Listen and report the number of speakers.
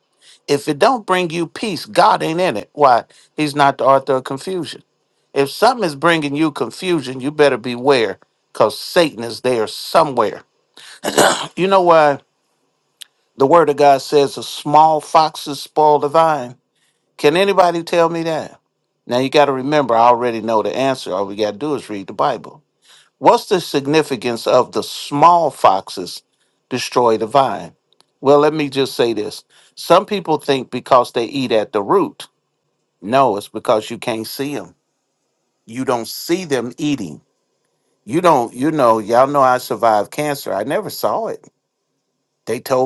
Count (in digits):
1